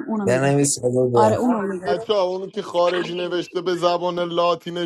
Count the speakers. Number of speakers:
3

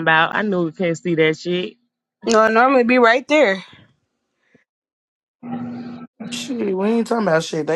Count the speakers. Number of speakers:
3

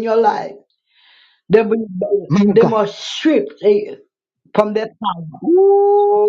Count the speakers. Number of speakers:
2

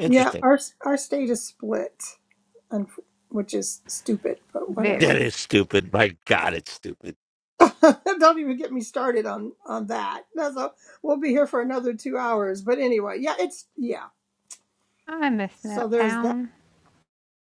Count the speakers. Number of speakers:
3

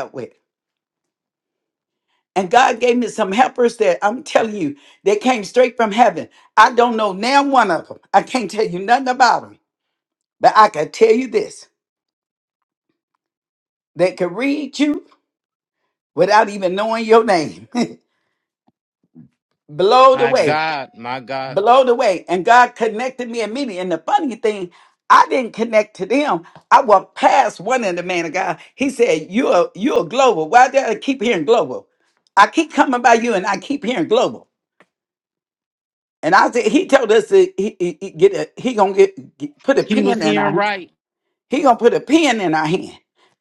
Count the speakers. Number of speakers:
2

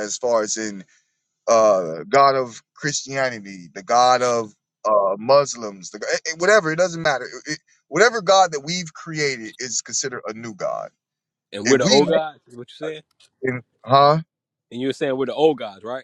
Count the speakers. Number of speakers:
2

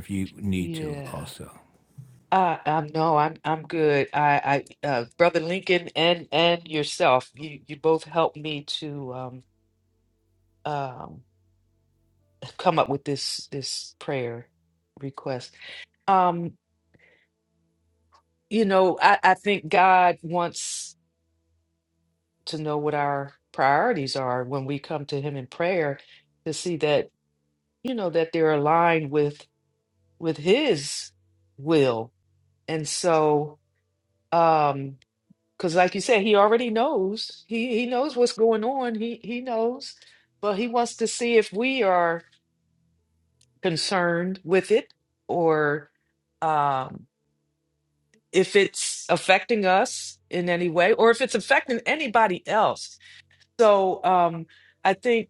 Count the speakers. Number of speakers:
2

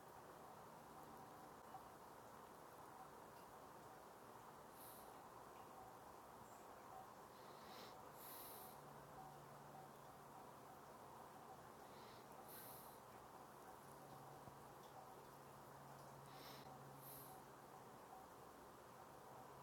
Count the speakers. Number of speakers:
0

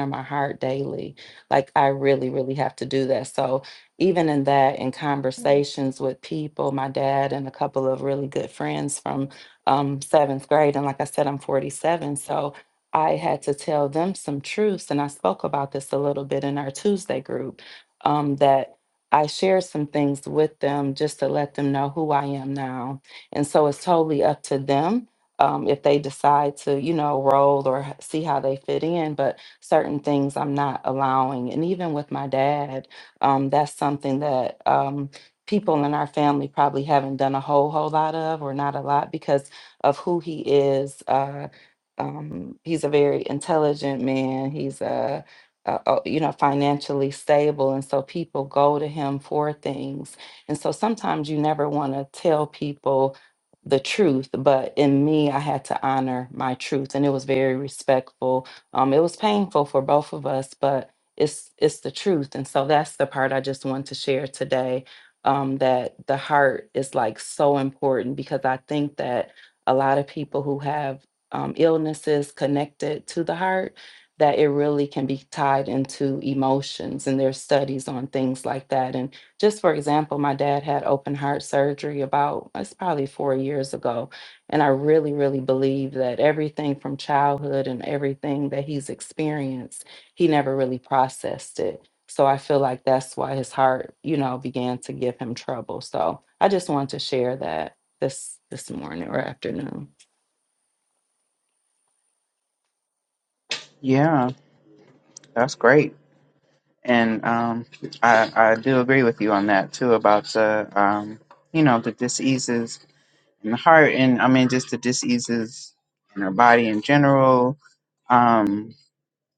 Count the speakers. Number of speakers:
2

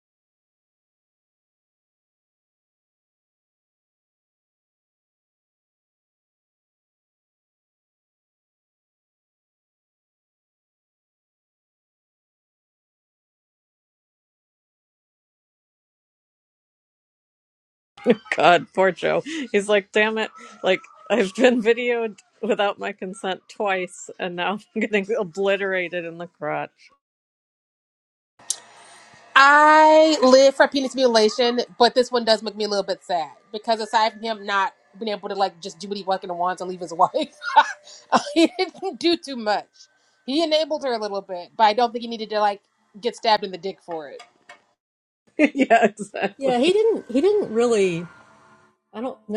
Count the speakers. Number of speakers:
3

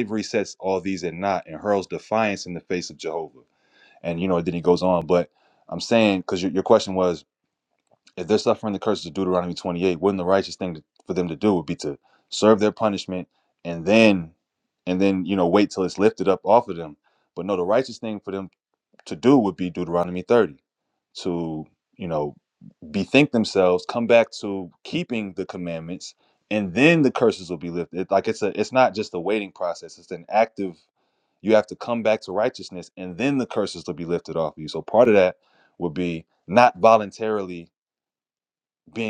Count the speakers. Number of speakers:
1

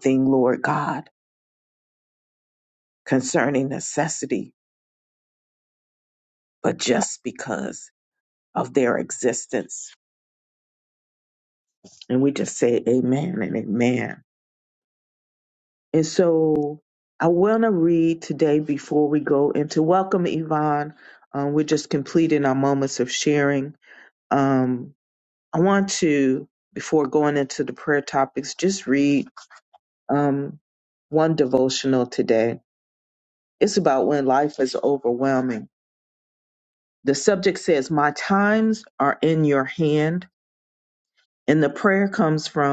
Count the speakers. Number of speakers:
1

